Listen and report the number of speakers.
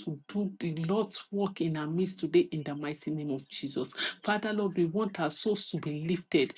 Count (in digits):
1